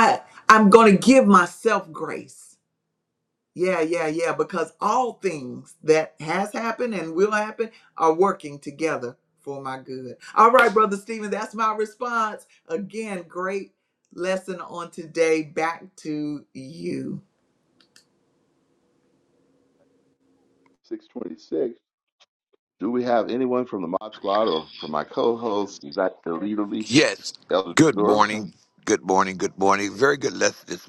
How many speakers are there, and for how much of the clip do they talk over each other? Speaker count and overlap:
3, about 2%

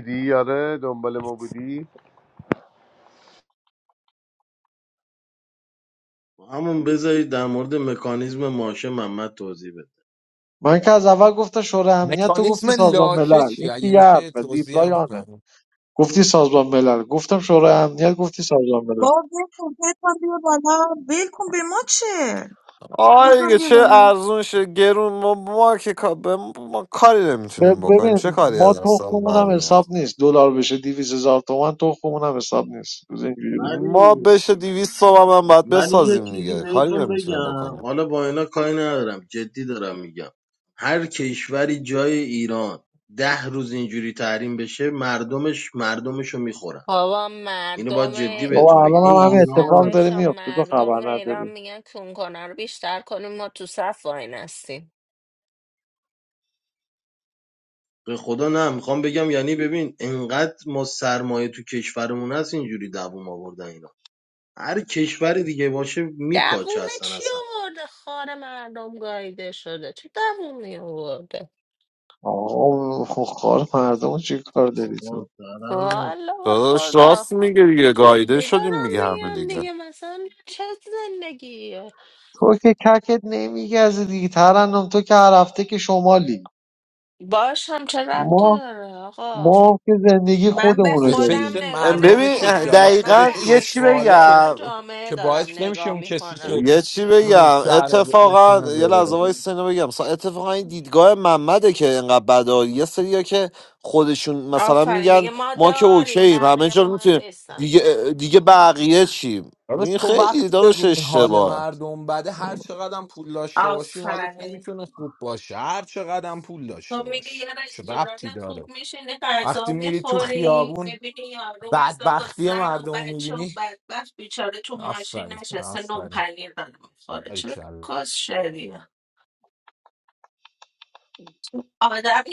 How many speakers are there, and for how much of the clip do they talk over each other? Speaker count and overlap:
7, about 28%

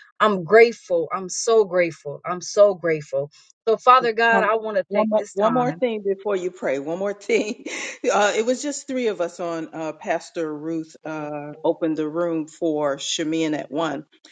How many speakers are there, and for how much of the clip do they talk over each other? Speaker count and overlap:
2, about 7%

